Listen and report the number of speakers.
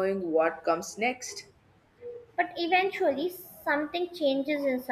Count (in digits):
2